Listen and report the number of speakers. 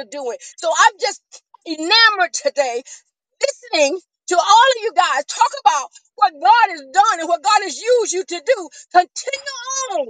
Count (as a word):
one